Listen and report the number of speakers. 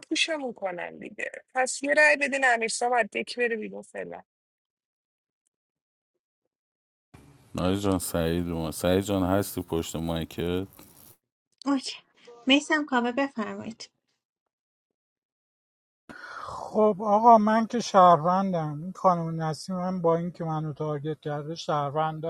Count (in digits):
4